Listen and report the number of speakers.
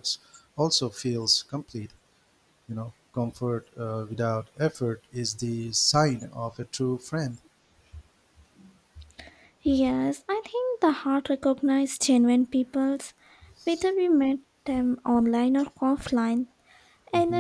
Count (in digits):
2